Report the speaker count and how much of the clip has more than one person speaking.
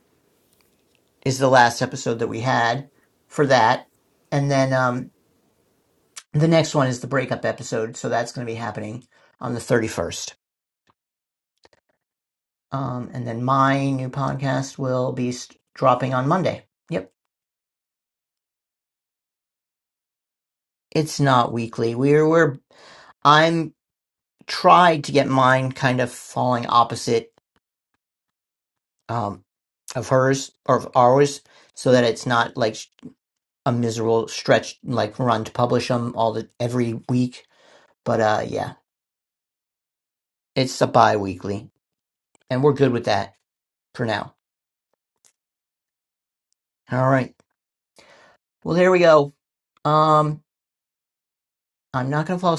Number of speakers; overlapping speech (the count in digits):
1, no overlap